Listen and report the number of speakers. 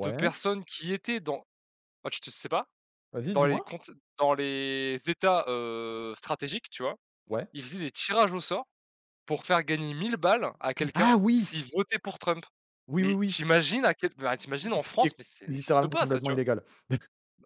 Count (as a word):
two